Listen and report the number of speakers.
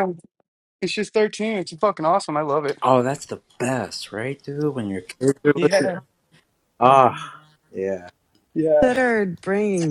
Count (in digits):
3